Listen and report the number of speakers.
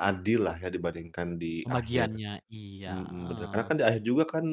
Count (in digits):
2